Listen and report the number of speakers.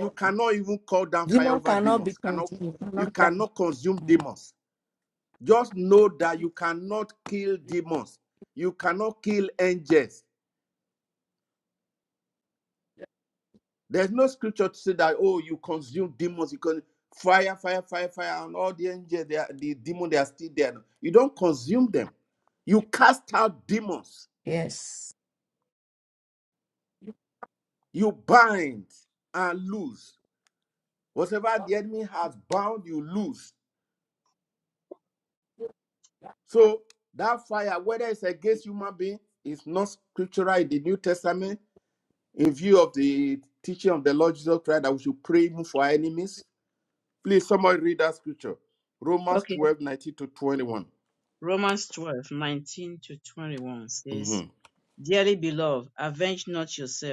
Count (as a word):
three